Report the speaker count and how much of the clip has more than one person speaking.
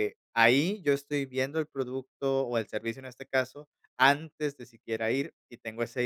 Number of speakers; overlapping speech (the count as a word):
one, no overlap